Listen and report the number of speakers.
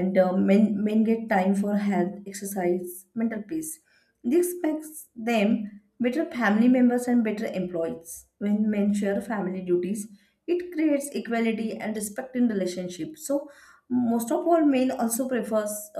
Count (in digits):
1